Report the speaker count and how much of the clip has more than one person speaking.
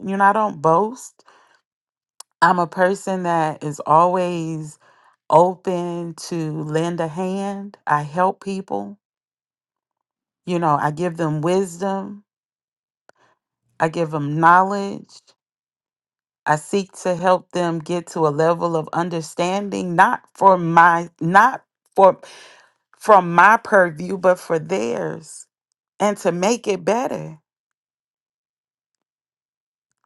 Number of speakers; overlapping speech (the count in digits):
1, no overlap